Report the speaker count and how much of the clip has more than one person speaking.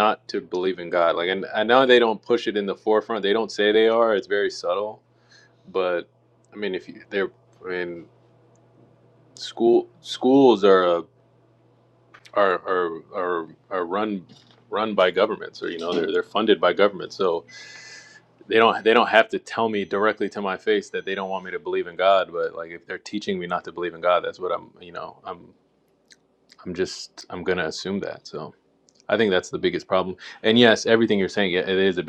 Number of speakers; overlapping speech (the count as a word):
one, no overlap